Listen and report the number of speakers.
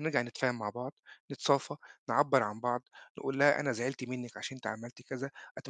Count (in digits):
1